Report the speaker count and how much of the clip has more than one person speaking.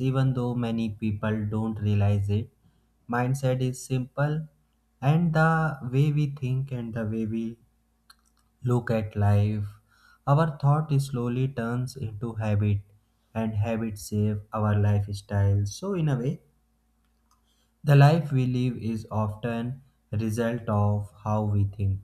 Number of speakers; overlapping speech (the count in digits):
1, no overlap